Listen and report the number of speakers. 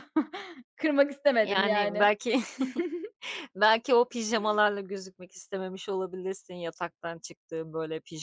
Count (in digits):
2